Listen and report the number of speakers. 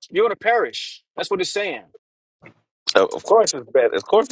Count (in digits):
2